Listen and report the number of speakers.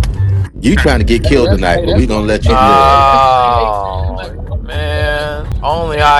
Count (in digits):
3